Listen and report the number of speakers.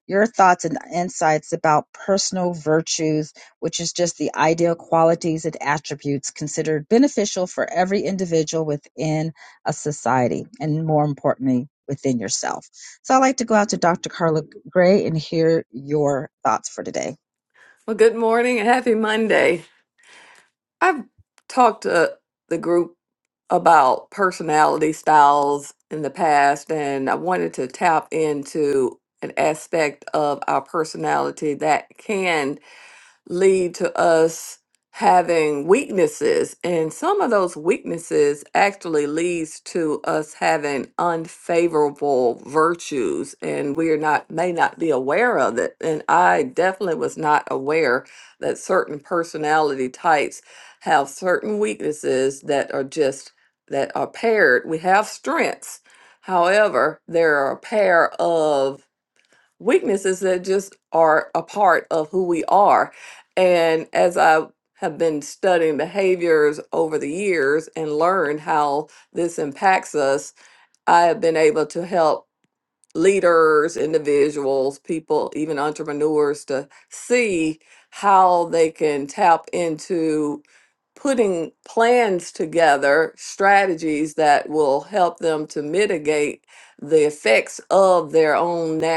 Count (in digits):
2